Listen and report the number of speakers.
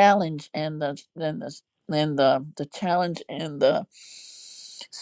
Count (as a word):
one